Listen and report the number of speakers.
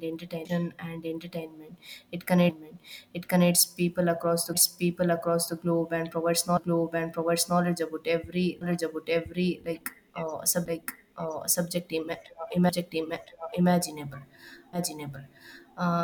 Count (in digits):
1